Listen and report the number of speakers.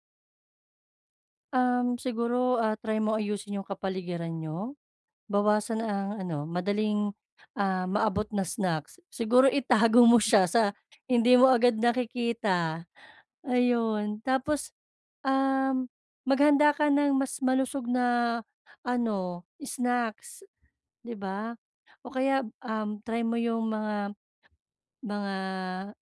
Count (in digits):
1